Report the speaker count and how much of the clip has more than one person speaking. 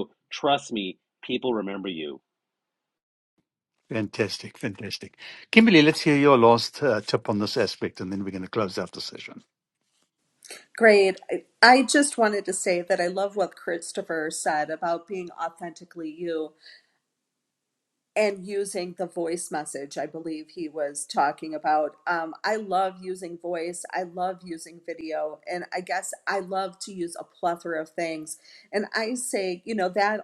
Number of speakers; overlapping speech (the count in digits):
3, no overlap